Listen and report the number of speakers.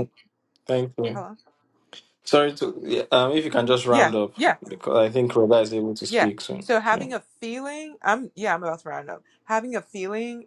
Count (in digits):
2